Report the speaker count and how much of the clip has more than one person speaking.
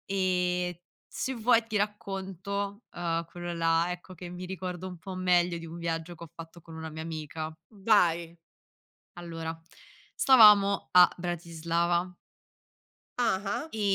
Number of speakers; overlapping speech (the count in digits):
2, no overlap